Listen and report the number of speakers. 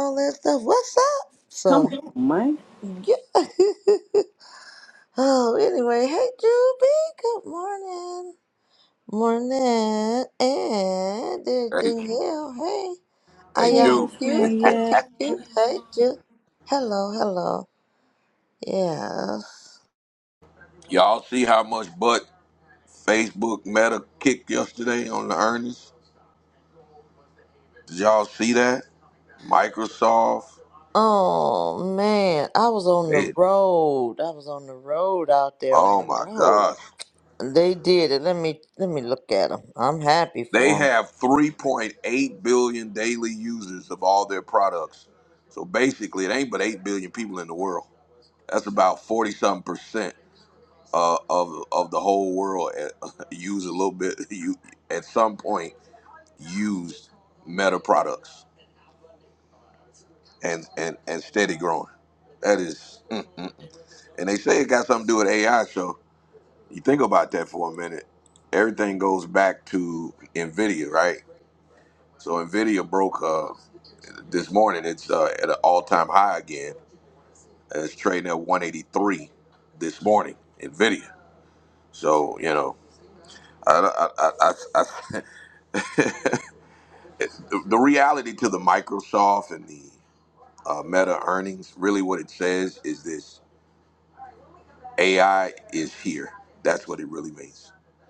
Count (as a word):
three